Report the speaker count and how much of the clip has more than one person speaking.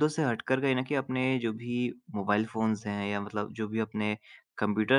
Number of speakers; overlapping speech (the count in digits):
1, no overlap